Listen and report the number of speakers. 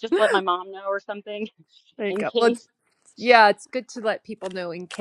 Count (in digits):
2